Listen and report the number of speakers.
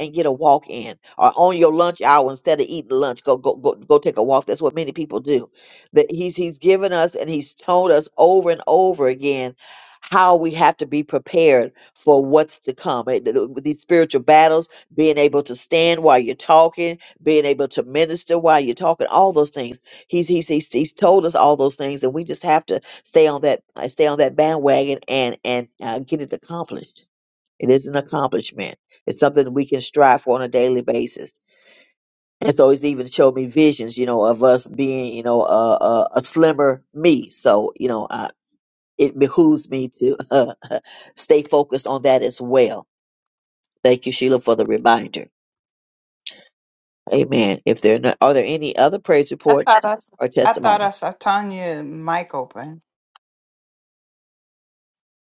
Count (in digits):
2